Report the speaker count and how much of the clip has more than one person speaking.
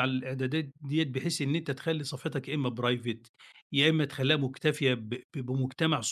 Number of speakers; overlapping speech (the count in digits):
1, no overlap